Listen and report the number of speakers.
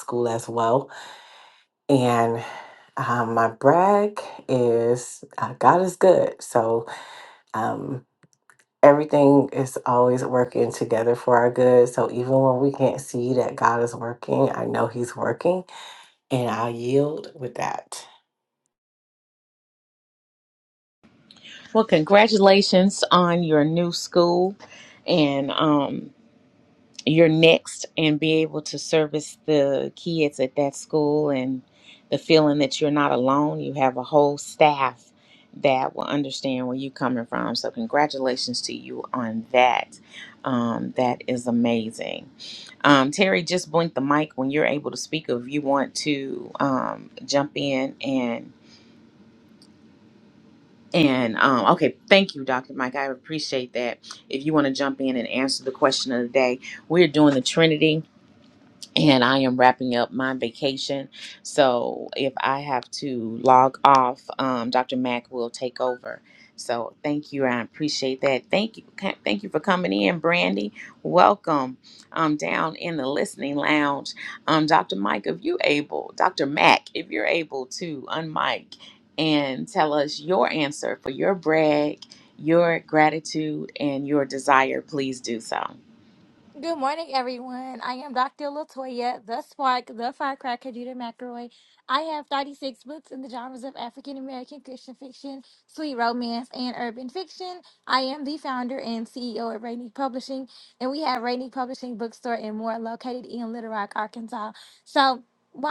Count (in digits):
3